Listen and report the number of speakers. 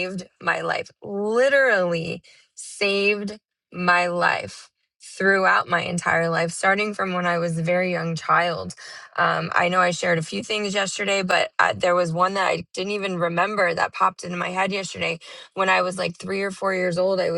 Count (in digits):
1